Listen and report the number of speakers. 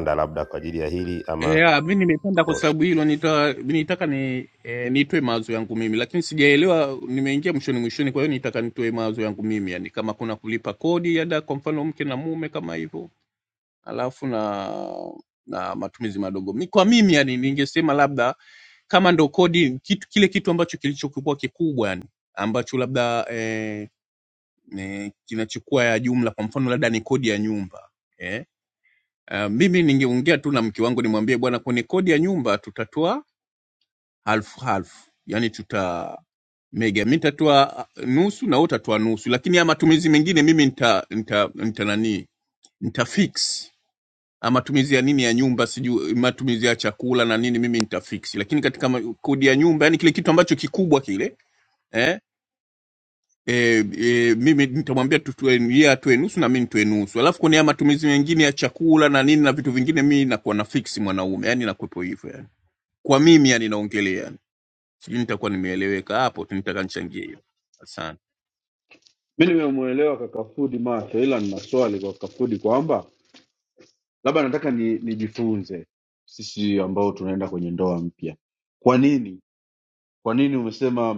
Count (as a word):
three